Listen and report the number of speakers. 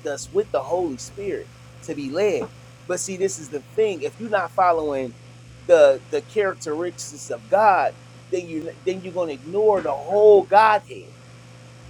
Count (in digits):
1